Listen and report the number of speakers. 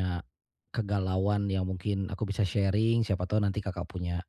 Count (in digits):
1